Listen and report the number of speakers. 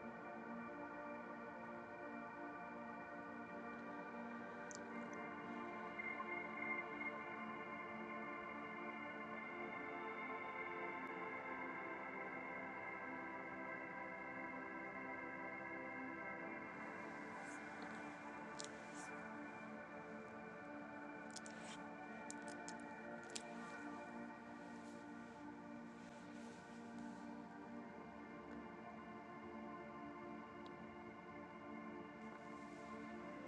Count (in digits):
0